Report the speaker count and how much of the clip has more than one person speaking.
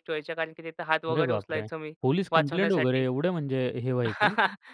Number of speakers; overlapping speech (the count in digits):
2, about 28%